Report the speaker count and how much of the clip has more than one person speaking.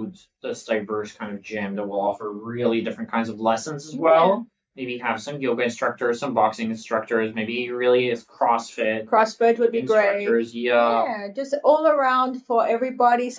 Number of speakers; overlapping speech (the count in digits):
2, about 10%